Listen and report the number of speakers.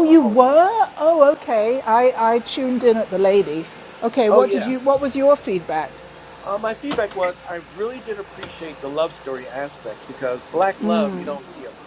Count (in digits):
2